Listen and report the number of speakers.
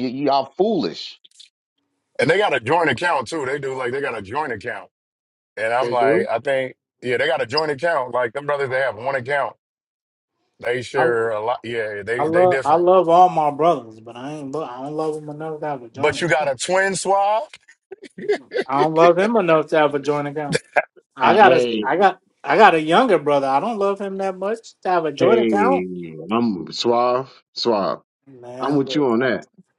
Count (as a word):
four